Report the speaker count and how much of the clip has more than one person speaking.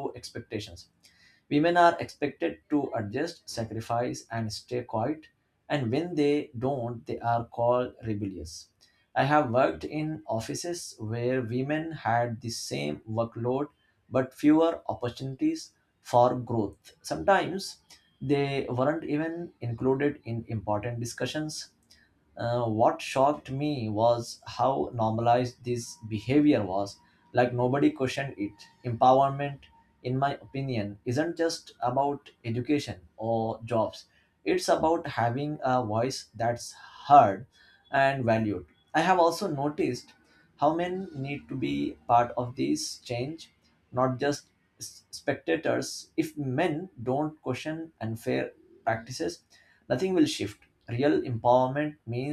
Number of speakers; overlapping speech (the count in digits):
1, no overlap